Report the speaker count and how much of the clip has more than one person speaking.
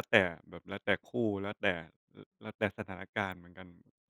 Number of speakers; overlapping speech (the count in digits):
1, no overlap